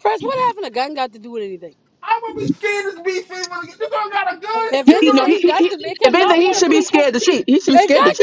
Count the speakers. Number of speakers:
3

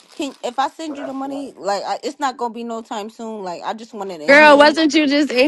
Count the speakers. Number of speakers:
2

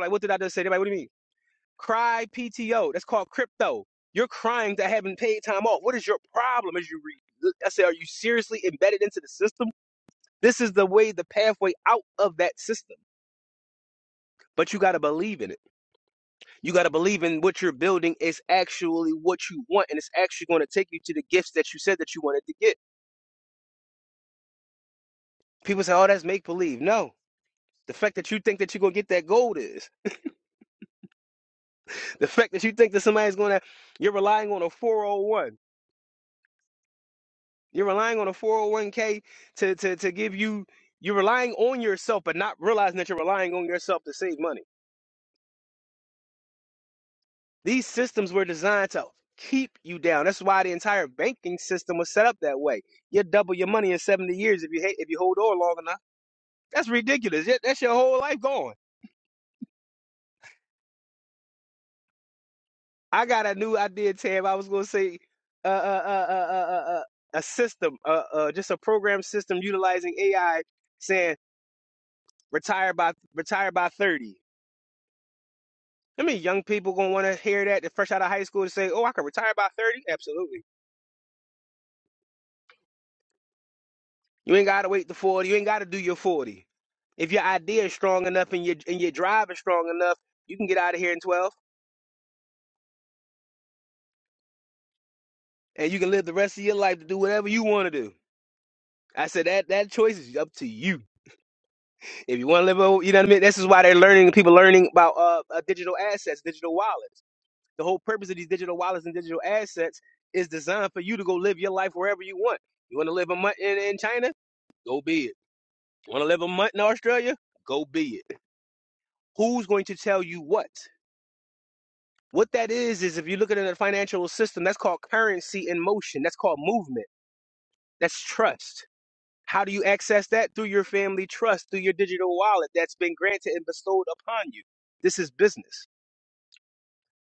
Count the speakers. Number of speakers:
1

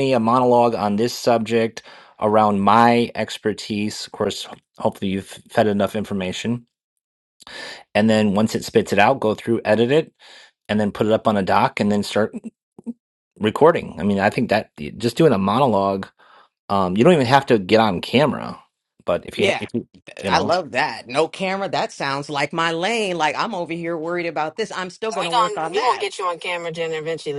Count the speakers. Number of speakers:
3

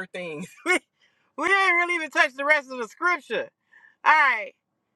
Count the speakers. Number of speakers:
1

